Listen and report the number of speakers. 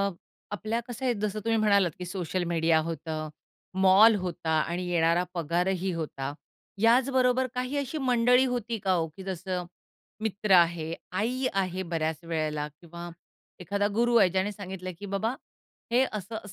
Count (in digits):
1